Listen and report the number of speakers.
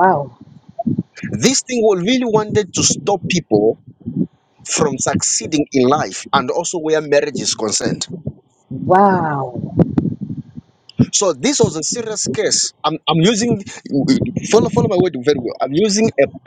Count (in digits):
2